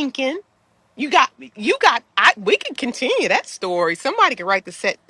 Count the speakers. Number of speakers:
1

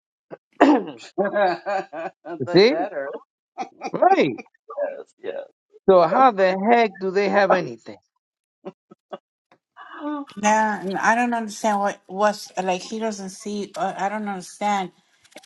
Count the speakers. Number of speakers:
3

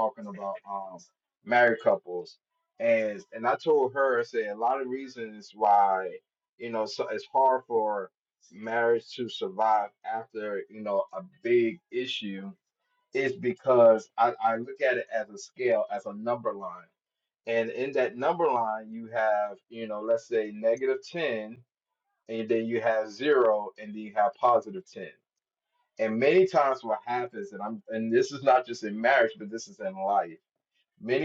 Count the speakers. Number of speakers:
1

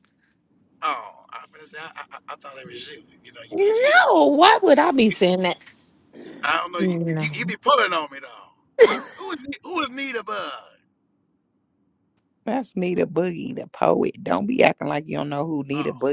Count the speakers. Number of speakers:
3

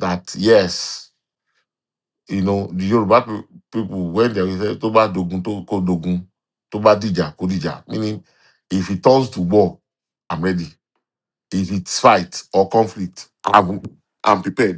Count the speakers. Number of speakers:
1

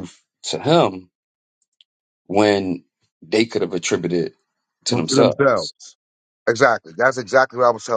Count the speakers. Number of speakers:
2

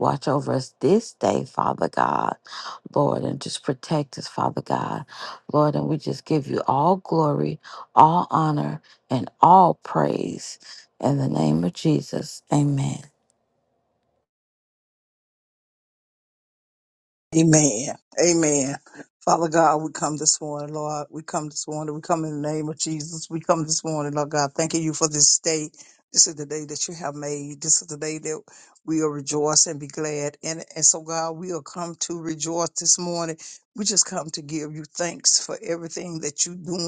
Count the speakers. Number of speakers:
2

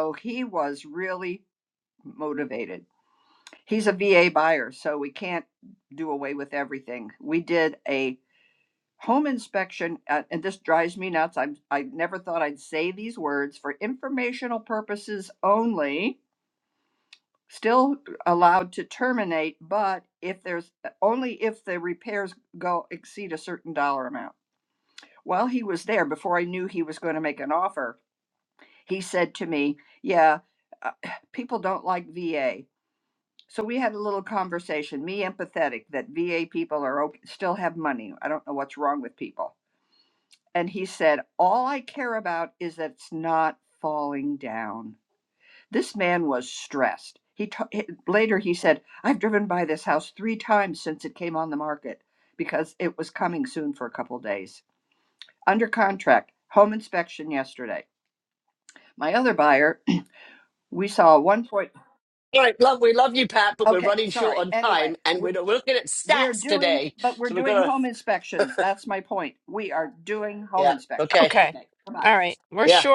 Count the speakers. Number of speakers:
3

